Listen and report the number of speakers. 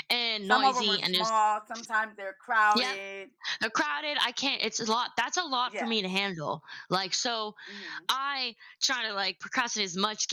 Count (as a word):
two